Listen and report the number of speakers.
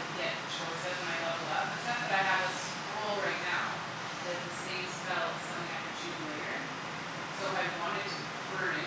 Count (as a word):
one